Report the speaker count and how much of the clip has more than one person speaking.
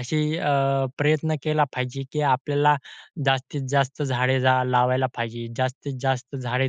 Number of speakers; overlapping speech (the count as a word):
one, no overlap